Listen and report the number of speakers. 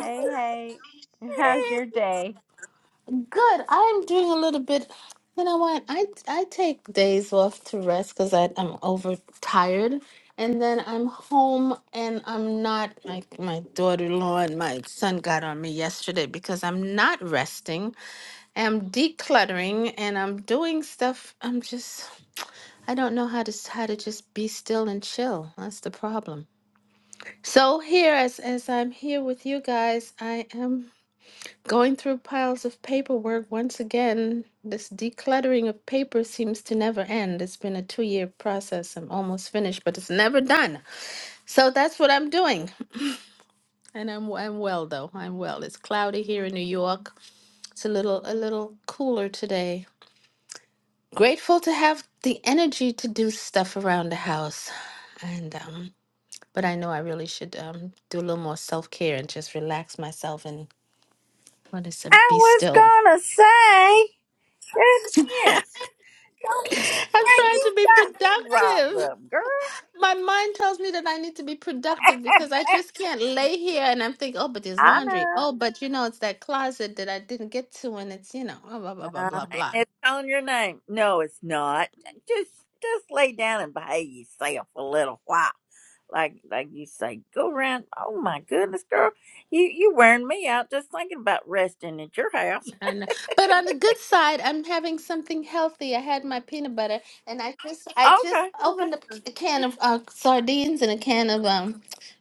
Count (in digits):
3